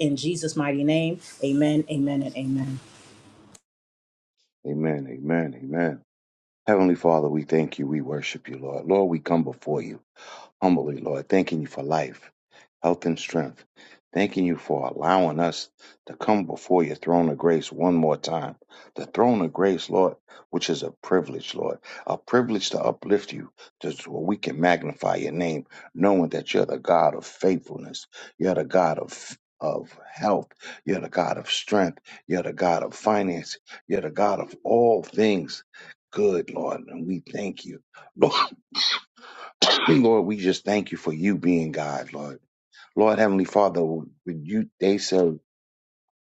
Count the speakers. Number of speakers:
two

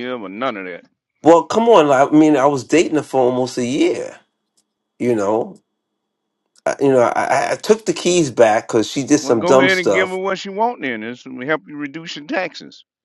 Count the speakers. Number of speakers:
two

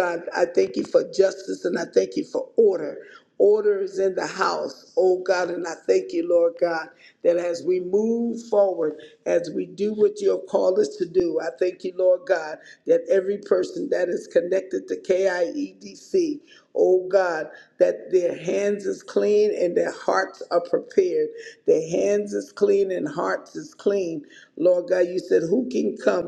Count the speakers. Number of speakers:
one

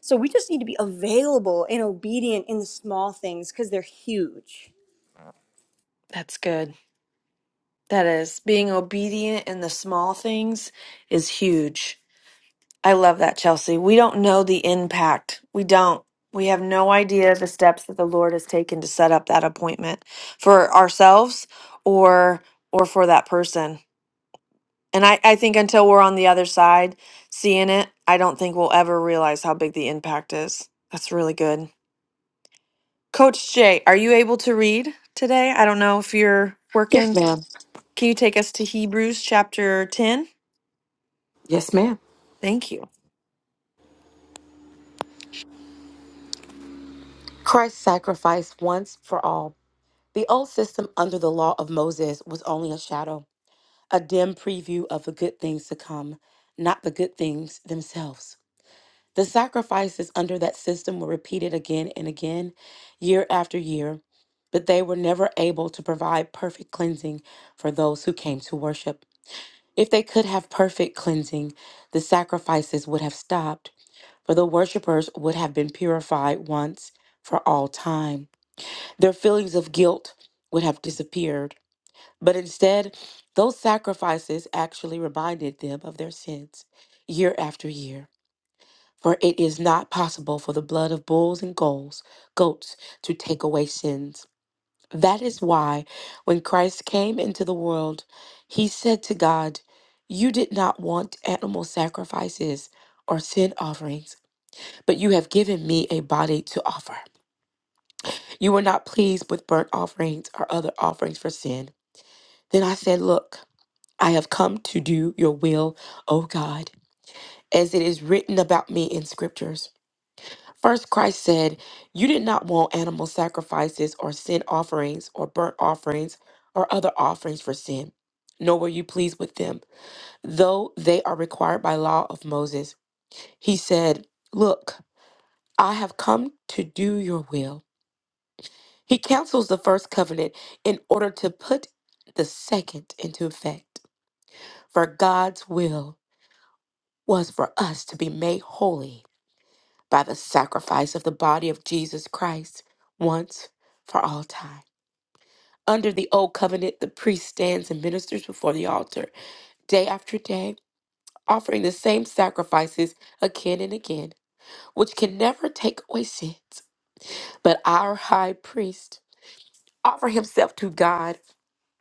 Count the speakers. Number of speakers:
three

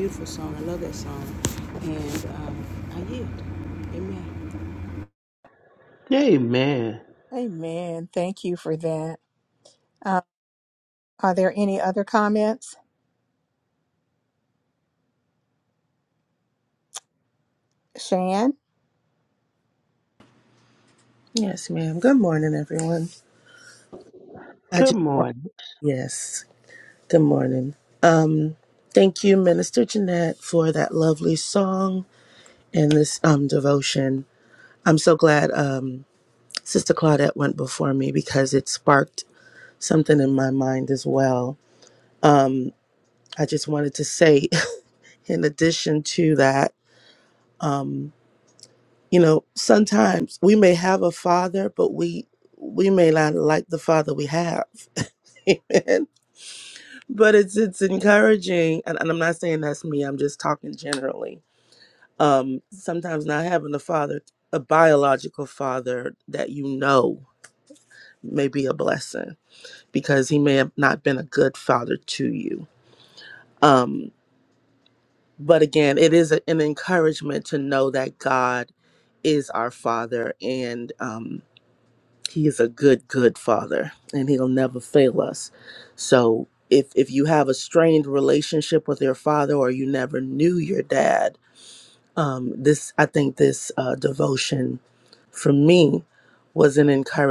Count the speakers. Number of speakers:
four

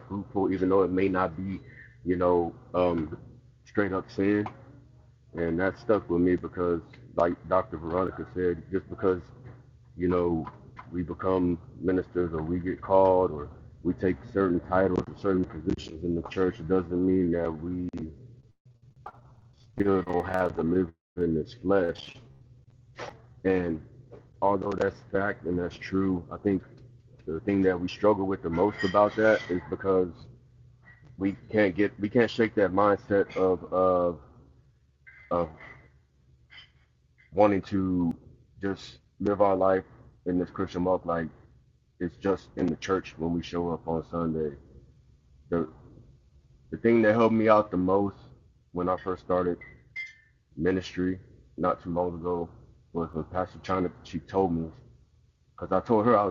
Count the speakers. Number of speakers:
one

